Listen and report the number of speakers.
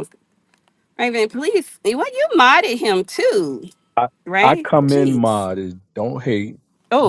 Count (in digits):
2